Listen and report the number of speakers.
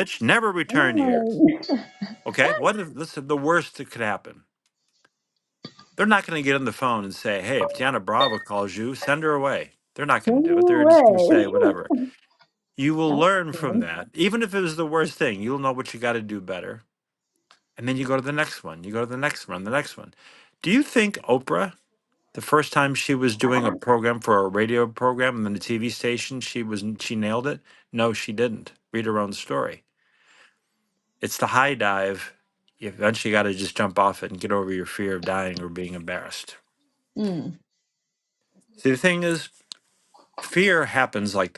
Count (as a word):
two